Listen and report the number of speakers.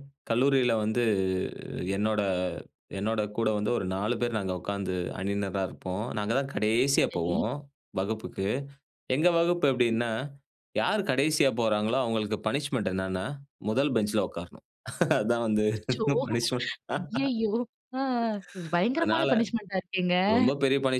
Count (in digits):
2